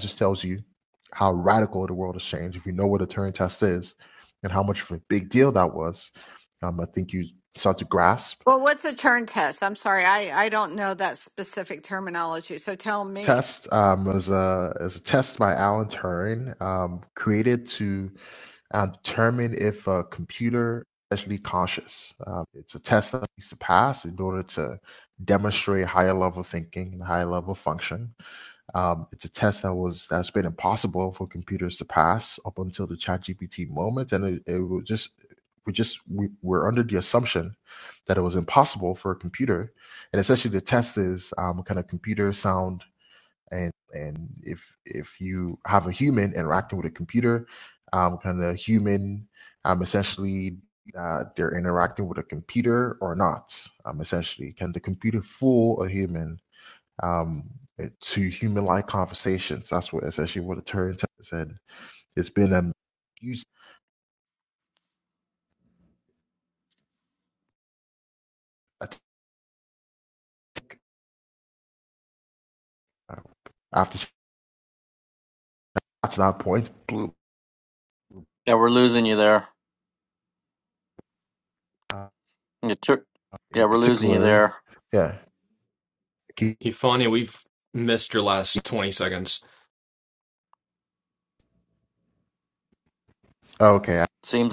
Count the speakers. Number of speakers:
4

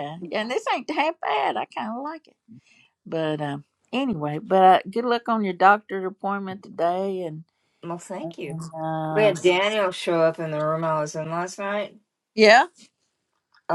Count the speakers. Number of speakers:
2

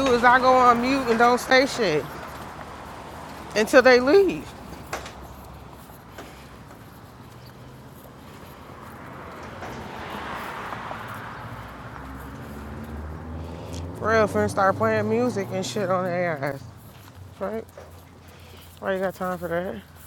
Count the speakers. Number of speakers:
1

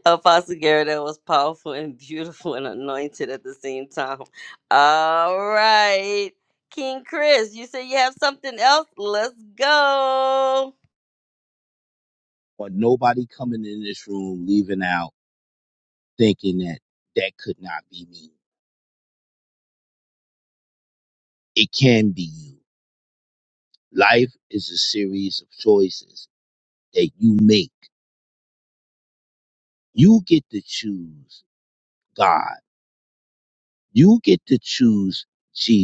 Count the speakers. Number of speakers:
2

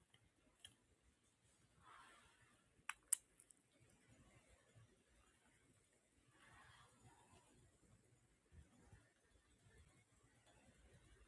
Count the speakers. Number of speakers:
0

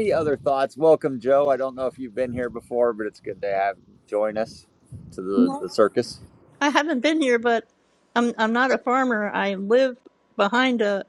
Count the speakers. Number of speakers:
2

